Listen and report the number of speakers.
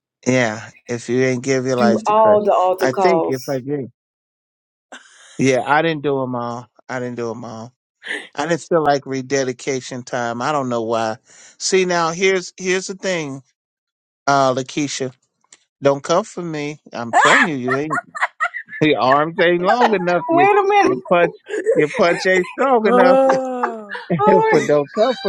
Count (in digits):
3